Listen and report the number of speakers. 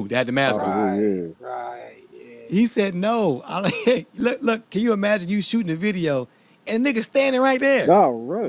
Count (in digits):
3